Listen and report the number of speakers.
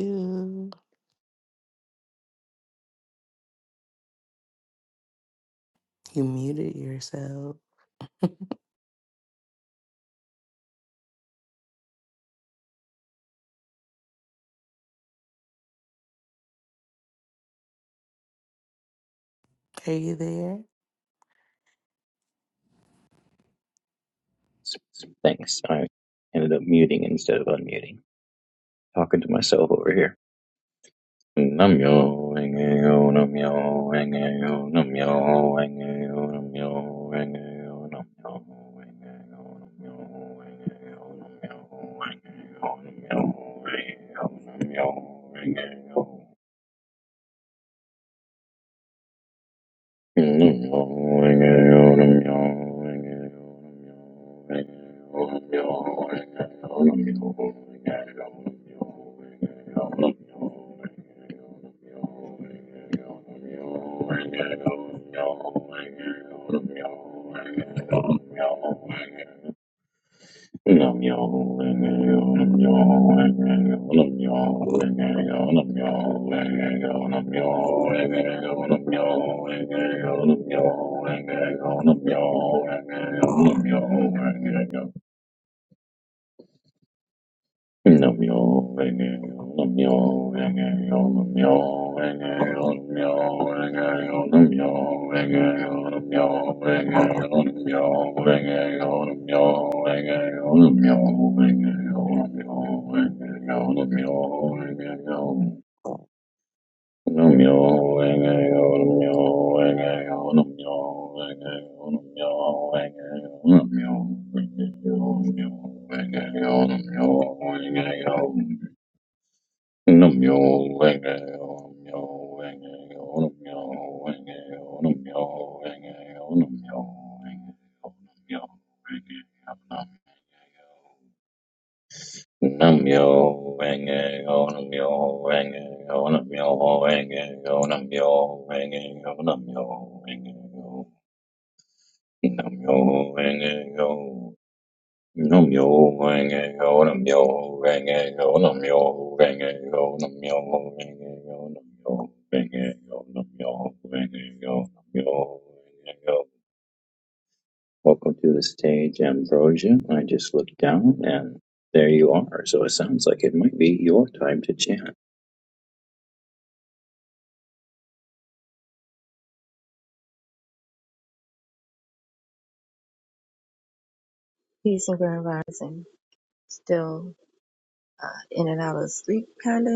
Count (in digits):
3